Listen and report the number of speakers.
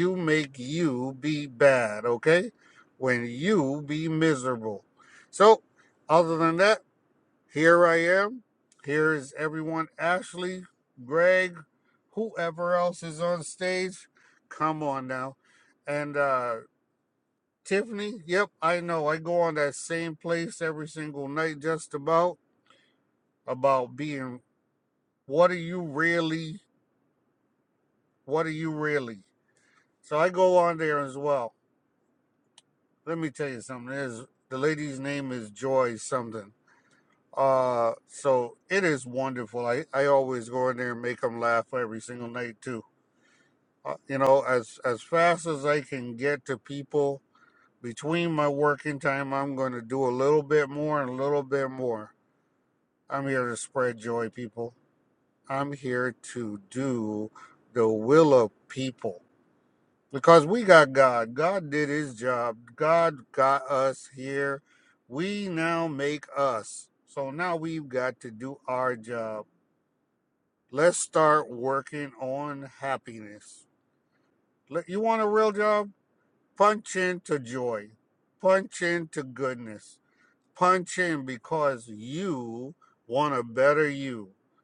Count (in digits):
1